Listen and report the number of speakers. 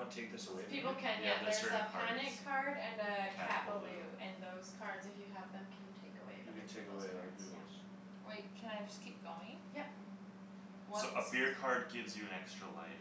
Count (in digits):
4